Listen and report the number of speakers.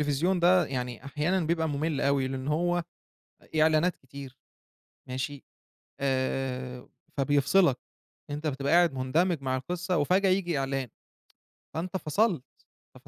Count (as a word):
one